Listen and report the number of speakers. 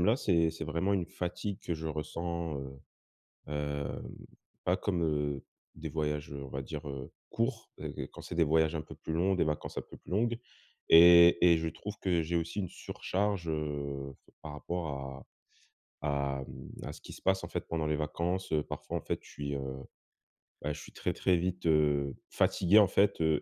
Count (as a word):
one